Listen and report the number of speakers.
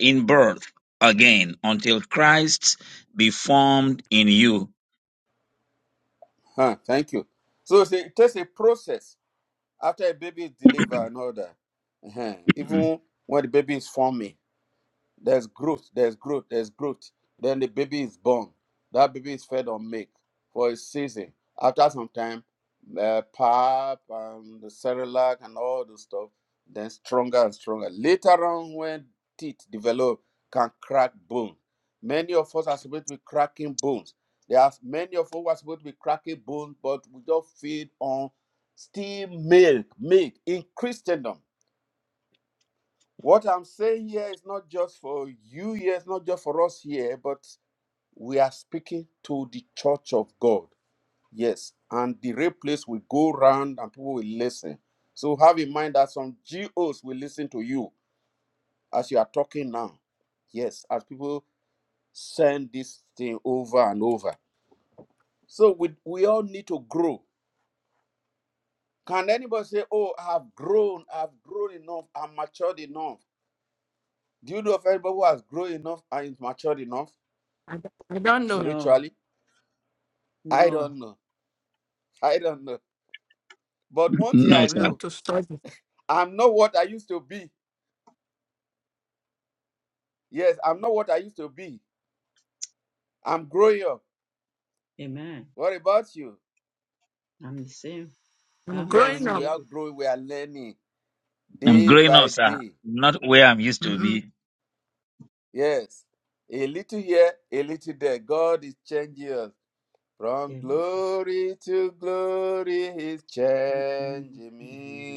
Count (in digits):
4